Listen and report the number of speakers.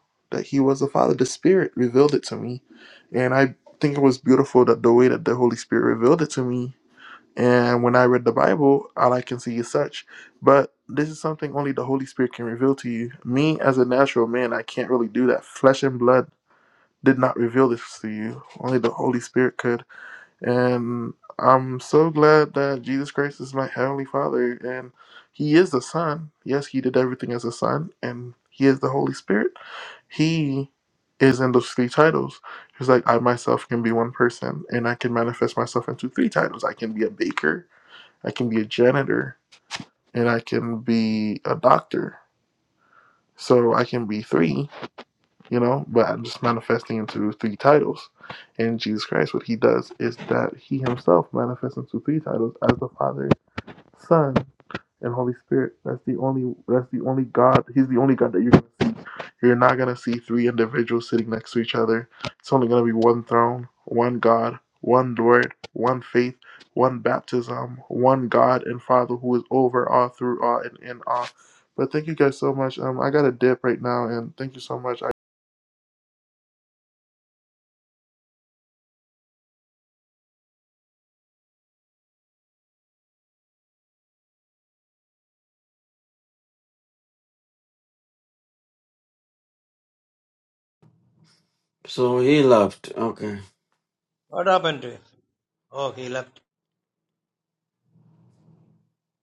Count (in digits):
3